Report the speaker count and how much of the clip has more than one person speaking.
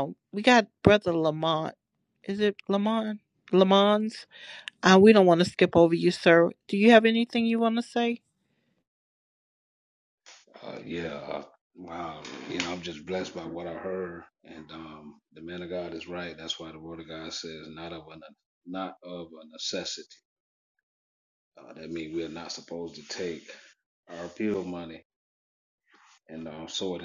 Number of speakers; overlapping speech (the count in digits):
2, no overlap